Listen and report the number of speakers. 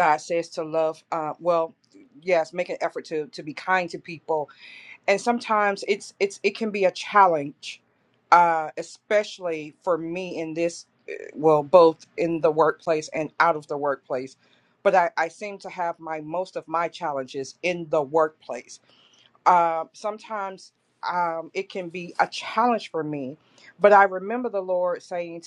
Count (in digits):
1